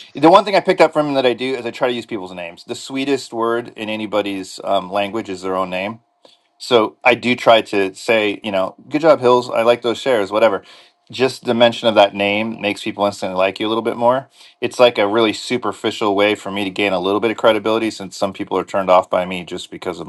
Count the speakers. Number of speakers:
one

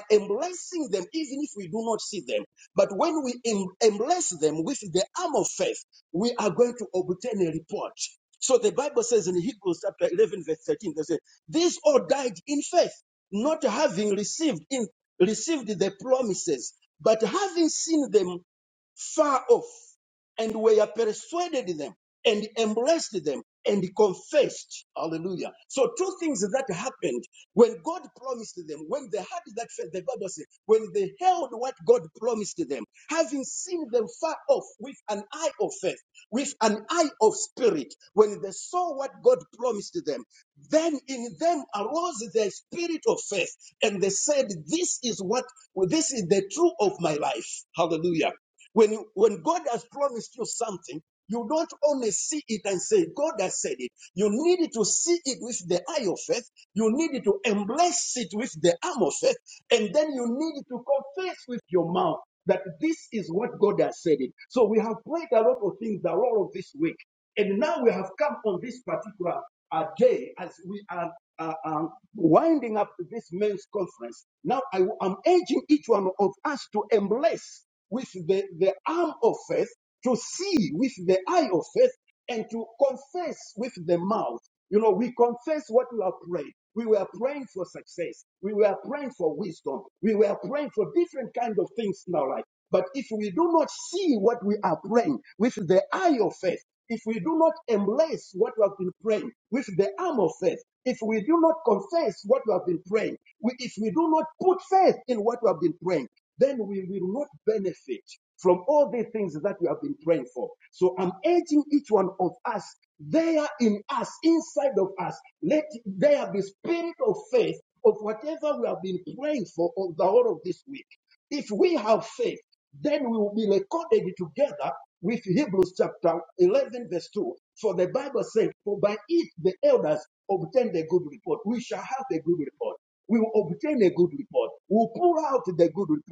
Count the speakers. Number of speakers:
one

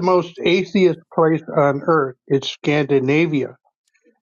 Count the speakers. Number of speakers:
one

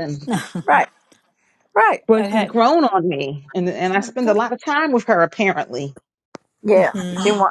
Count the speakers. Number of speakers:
three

